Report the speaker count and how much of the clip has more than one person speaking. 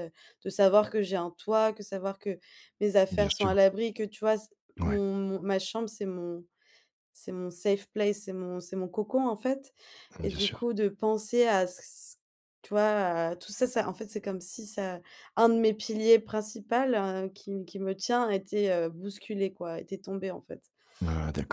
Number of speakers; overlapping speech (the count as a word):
two, about 5%